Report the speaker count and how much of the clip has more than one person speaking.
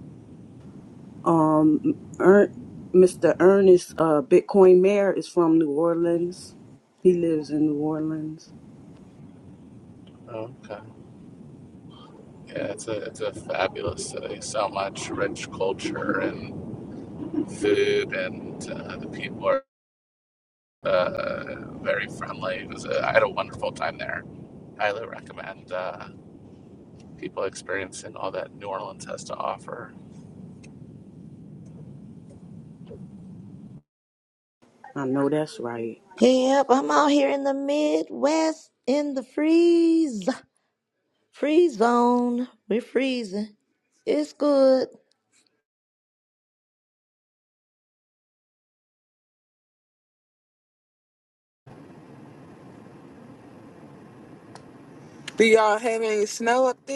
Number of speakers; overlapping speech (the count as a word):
four, no overlap